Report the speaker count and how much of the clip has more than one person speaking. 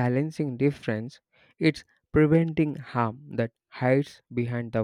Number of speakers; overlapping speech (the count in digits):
1, no overlap